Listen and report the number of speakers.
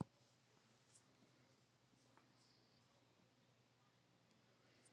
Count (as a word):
zero